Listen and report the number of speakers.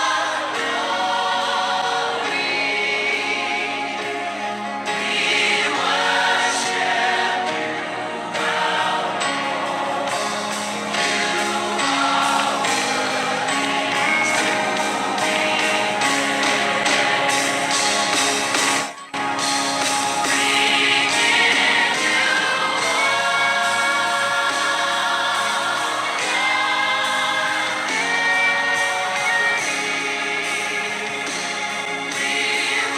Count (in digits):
0